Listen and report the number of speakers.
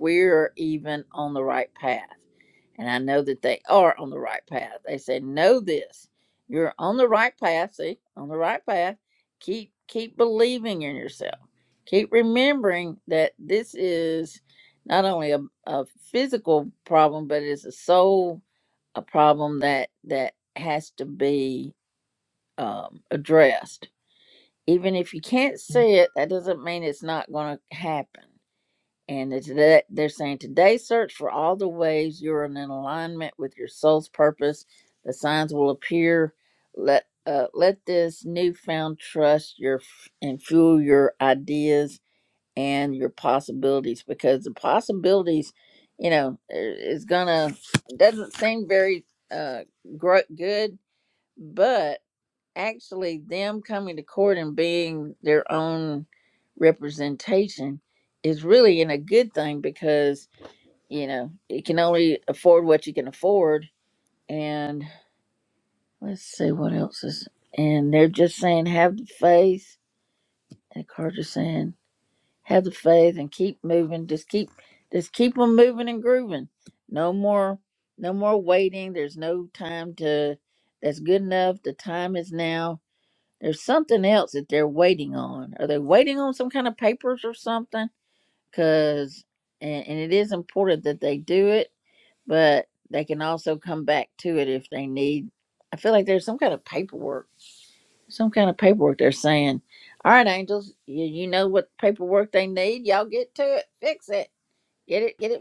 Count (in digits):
1